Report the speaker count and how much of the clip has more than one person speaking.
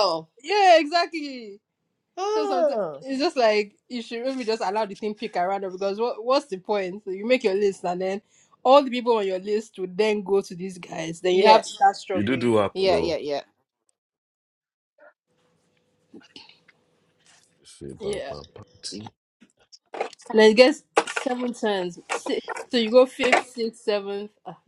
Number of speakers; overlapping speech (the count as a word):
three, about 8%